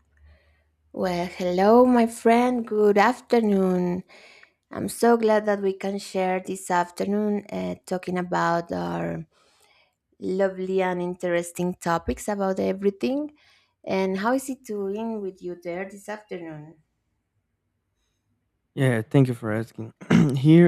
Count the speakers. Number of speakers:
two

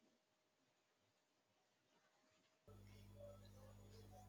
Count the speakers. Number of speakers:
zero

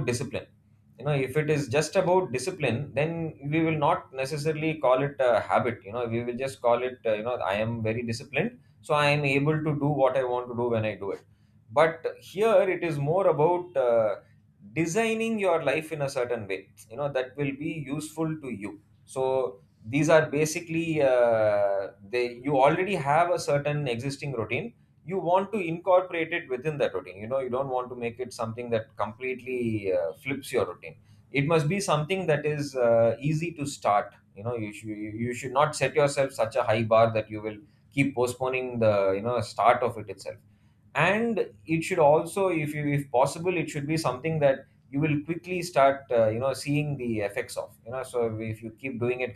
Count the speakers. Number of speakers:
one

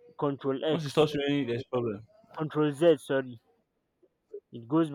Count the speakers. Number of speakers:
two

